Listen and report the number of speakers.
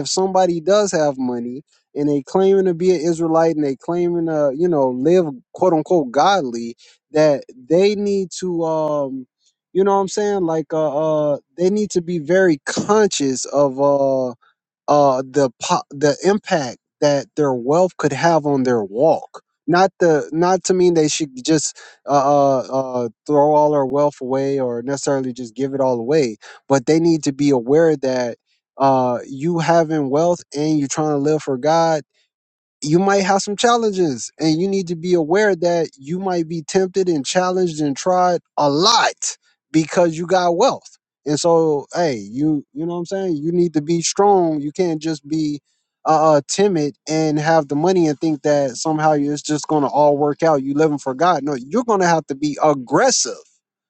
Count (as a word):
one